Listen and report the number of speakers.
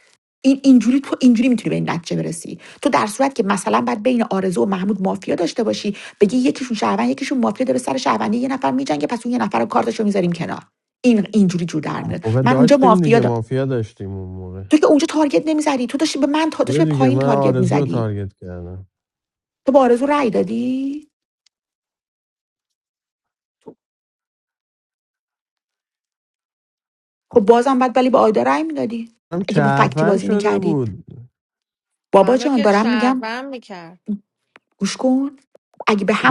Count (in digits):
3